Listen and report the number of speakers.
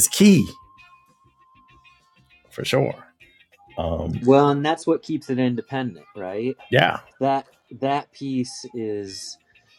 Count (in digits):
2